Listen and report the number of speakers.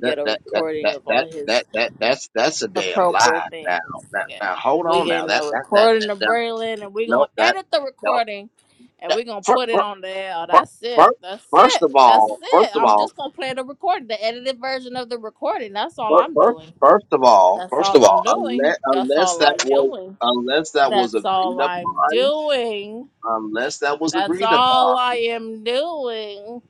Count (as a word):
two